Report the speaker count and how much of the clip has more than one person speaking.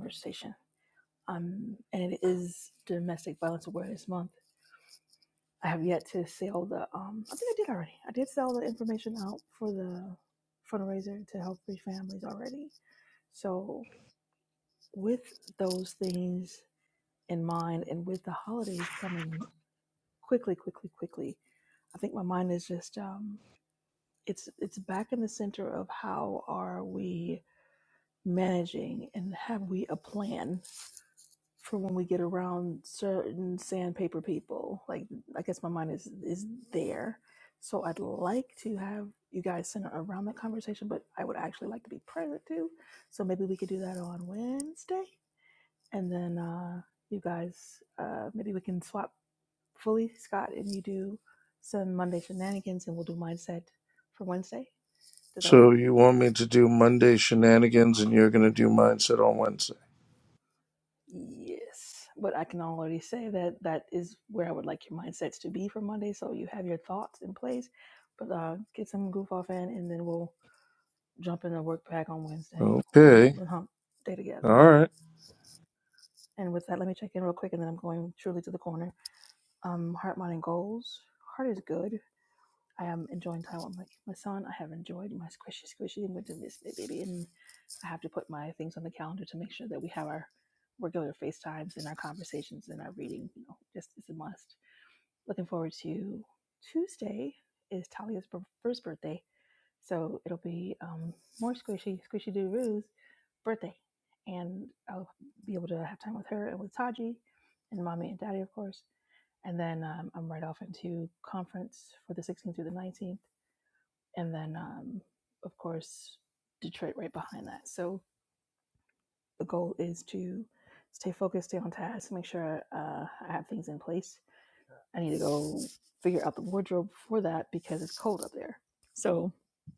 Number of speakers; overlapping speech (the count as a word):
two, about 1%